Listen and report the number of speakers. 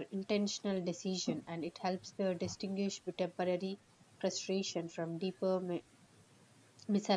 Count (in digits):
1